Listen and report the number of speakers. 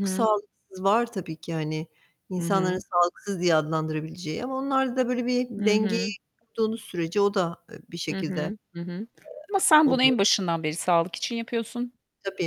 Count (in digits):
2